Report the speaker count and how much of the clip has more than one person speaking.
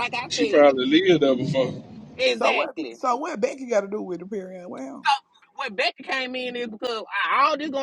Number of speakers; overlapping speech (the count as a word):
three, about 11%